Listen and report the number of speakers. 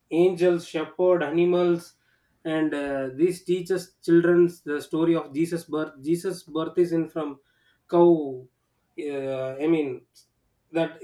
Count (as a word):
one